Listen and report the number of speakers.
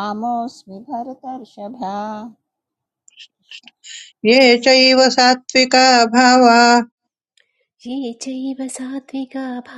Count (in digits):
3